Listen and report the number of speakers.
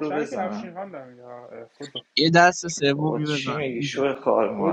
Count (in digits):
3